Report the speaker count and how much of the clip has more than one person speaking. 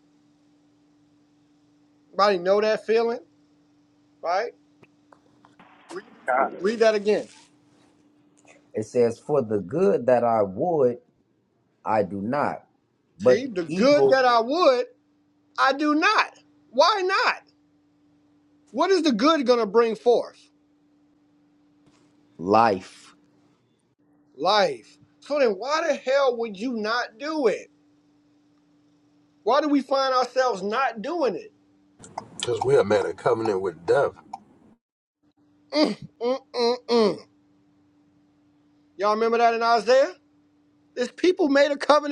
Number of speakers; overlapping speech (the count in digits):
3, about 2%